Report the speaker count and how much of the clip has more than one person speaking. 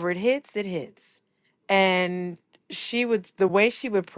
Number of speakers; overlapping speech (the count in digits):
1, no overlap